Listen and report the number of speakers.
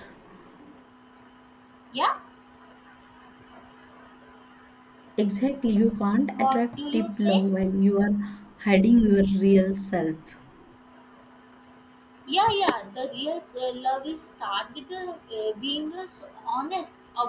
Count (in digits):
2